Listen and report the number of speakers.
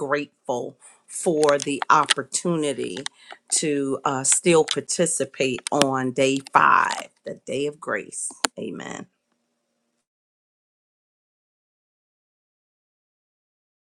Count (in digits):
1